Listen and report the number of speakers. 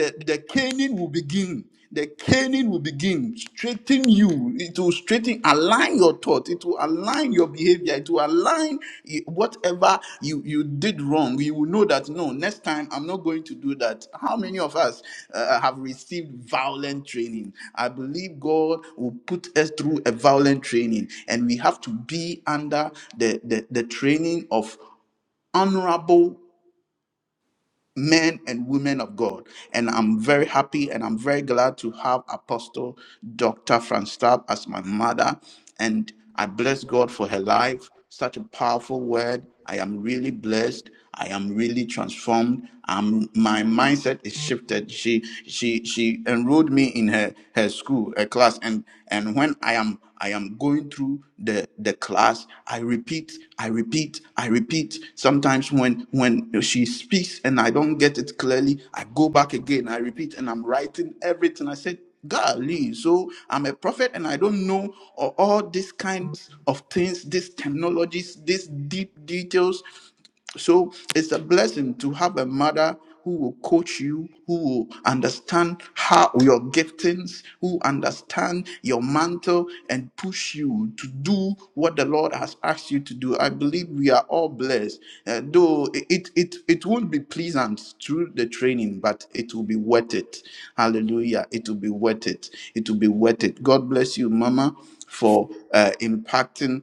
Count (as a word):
one